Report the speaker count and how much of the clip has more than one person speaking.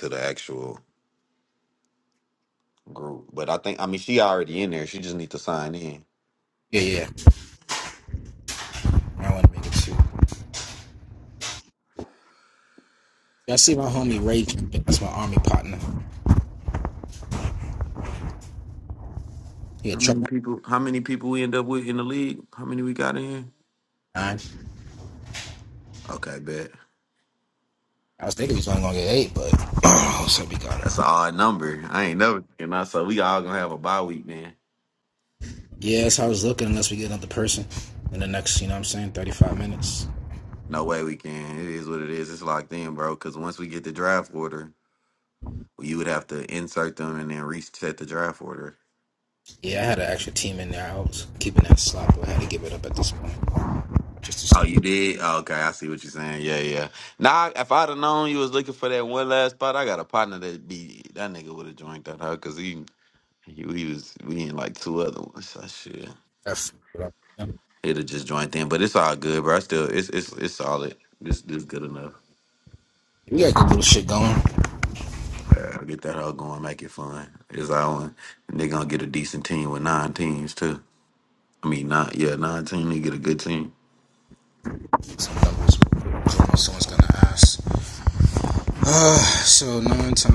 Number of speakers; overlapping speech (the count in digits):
2, about 1%